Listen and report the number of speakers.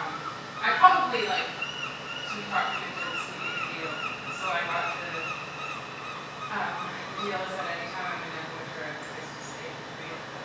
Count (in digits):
1